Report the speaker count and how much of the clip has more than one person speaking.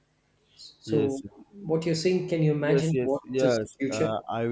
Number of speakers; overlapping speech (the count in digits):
2, about 41%